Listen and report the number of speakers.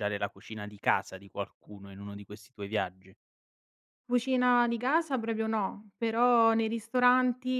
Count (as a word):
two